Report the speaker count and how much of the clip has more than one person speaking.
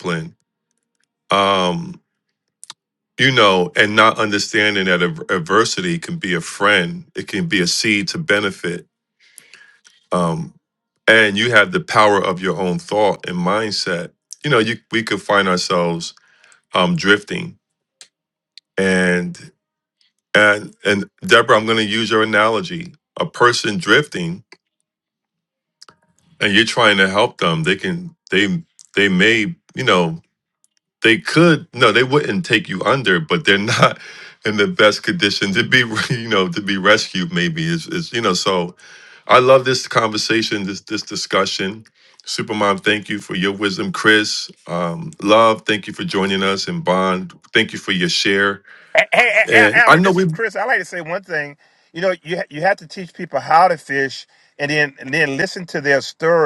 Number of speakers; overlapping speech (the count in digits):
2, about 2%